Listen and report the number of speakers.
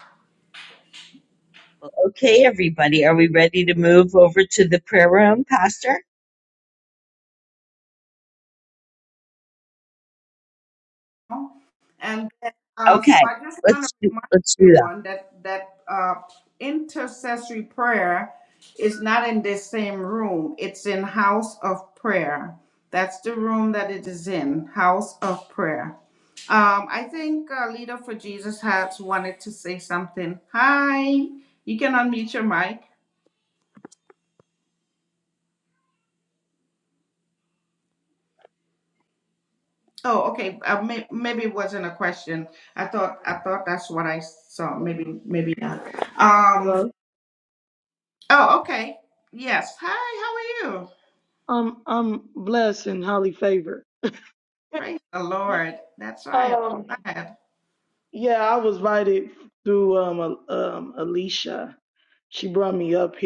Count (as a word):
three